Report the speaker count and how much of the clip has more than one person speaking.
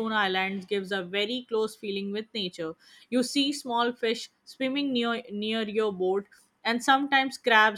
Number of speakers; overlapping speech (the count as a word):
one, no overlap